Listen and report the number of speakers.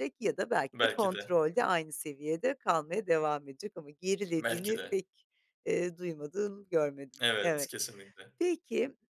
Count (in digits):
2